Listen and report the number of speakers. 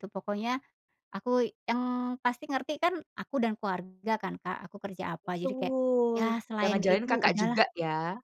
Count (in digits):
2